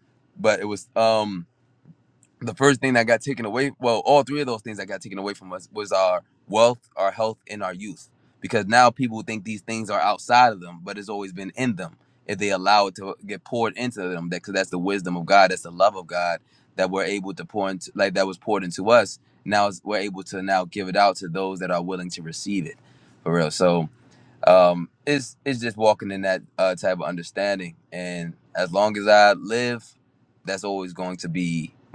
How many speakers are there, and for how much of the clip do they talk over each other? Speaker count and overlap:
one, no overlap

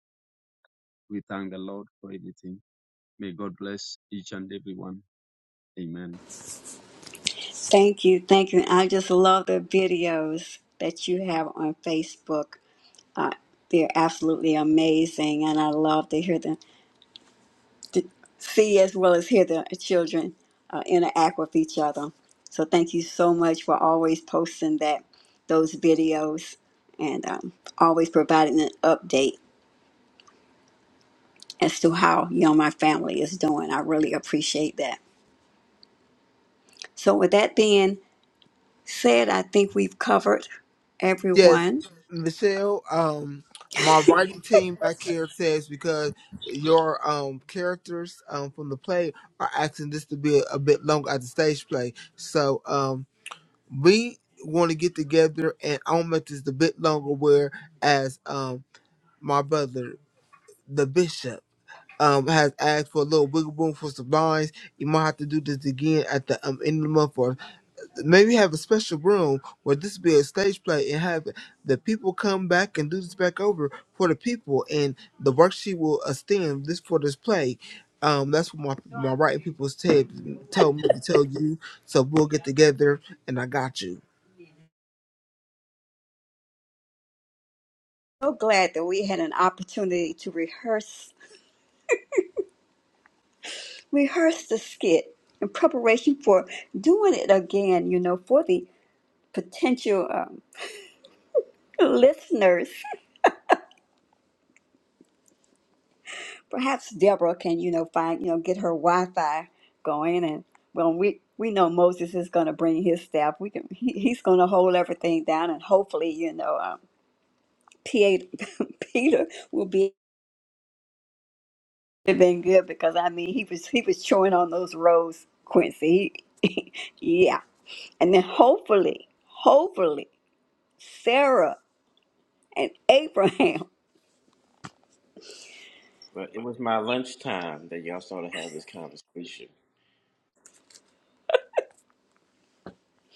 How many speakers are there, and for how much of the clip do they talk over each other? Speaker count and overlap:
four, under 1%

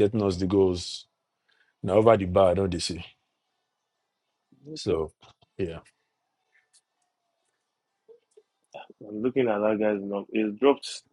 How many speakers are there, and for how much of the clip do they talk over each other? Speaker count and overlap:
two, about 2%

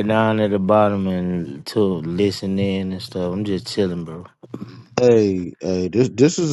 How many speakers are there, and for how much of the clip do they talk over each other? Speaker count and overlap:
two, no overlap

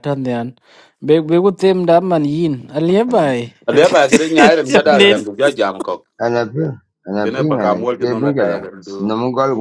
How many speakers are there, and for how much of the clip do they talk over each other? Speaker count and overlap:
three, about 21%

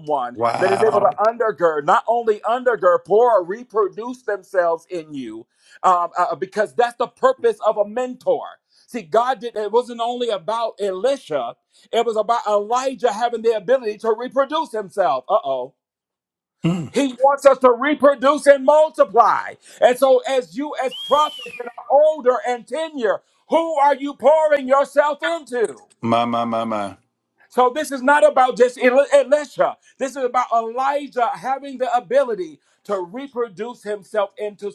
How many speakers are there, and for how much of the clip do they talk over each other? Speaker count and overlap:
two, about 2%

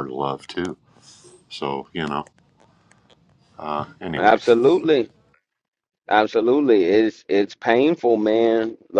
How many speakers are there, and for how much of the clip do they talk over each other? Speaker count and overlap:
two, about 3%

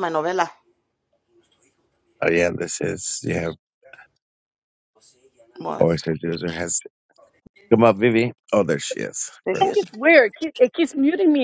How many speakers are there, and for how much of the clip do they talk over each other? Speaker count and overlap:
three, about 4%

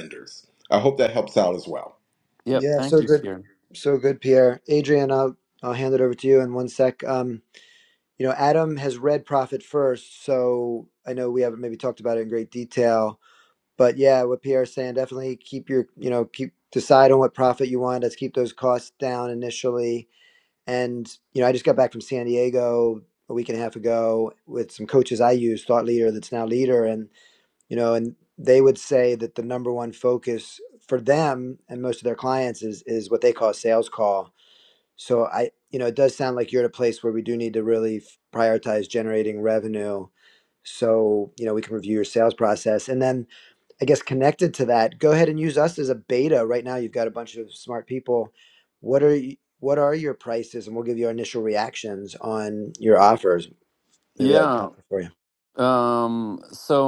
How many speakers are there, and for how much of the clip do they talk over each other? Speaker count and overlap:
three, about 2%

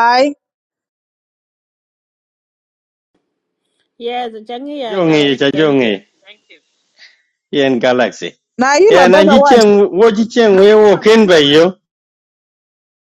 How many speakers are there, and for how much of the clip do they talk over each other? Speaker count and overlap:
three, about 14%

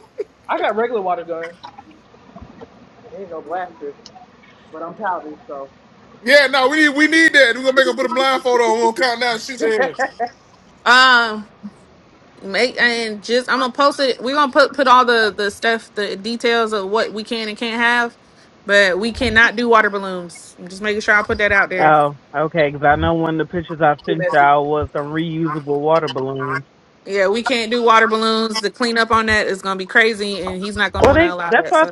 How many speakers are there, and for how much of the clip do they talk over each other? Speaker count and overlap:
four, about 5%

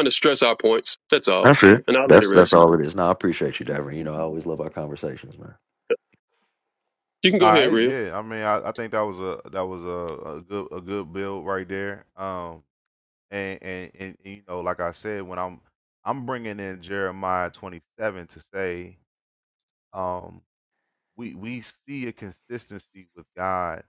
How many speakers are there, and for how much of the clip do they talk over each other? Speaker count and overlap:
three, about 5%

